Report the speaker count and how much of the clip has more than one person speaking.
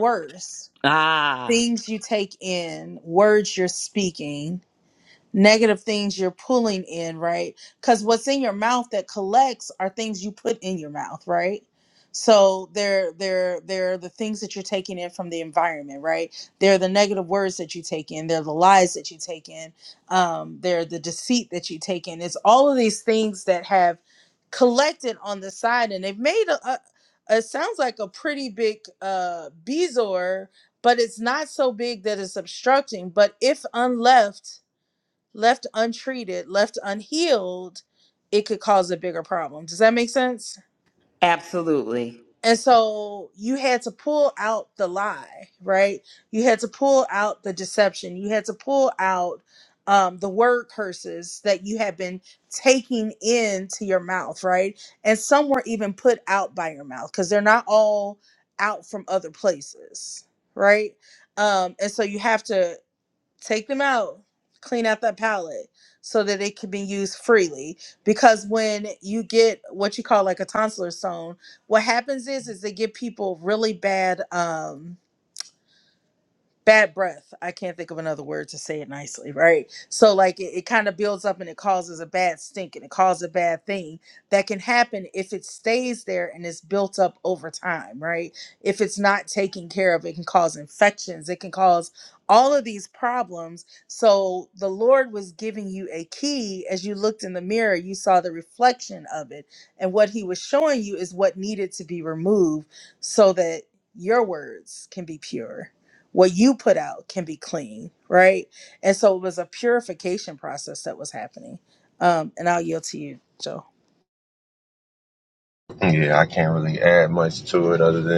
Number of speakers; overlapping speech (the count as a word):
three, under 1%